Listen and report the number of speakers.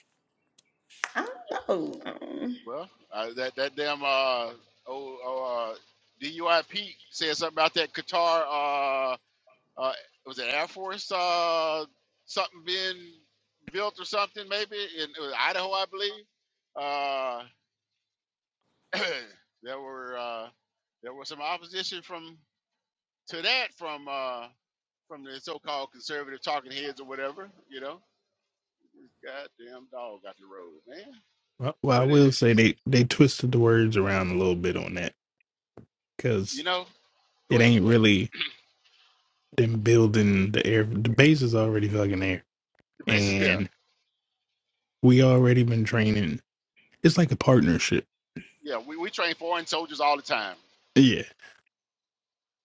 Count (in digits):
3